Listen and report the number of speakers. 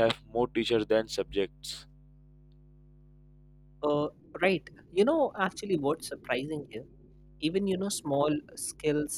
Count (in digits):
2